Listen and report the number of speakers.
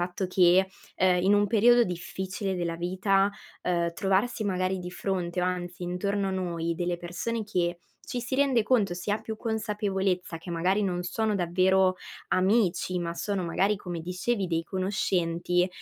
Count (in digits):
1